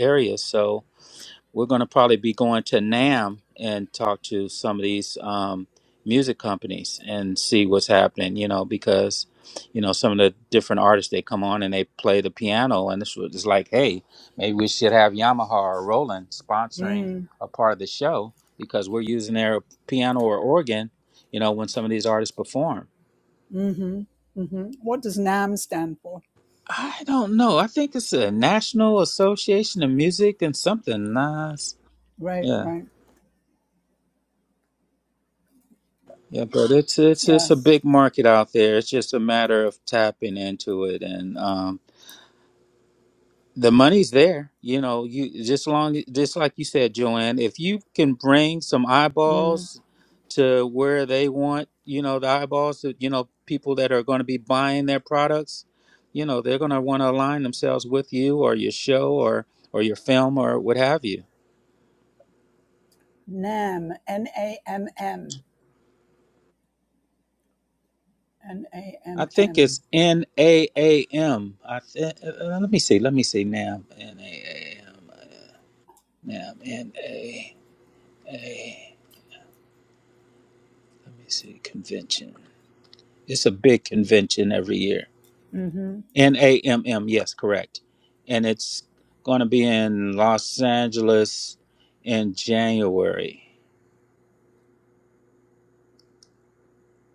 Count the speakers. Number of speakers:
two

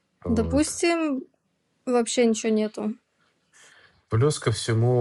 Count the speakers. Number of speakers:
two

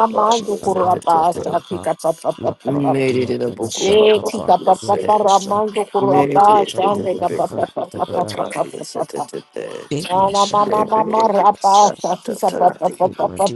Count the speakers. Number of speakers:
three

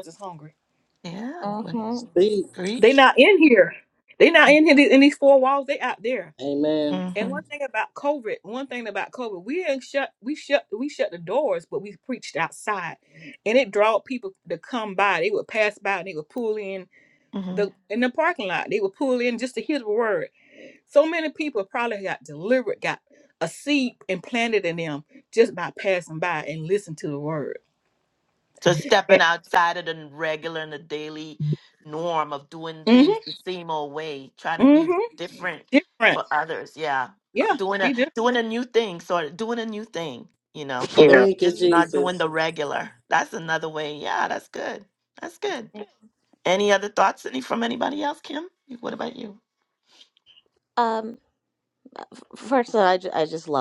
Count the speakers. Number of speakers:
four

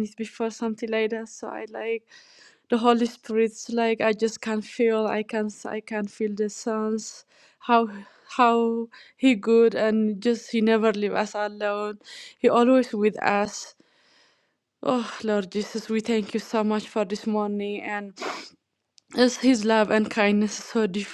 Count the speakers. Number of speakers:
one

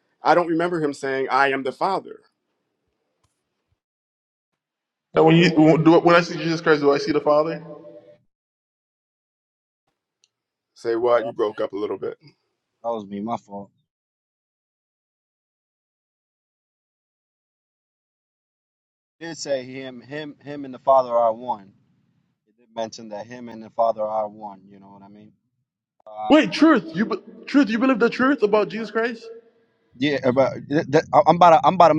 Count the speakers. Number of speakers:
three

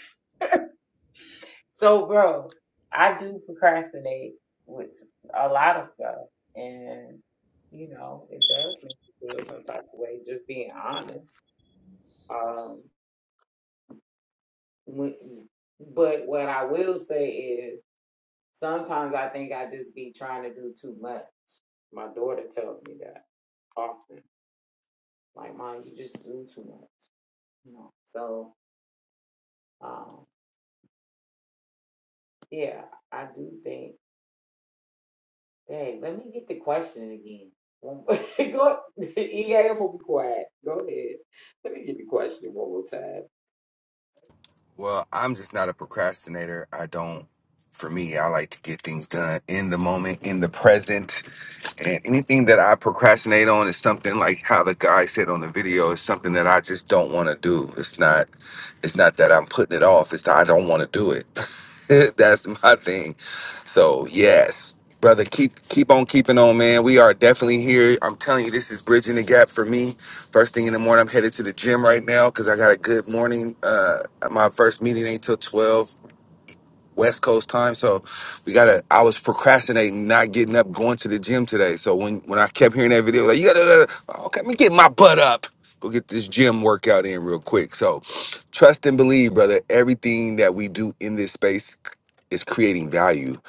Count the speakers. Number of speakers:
two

